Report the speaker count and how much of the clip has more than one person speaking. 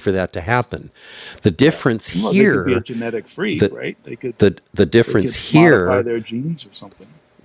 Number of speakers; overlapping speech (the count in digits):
2, about 32%